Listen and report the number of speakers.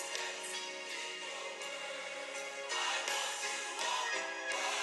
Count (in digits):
0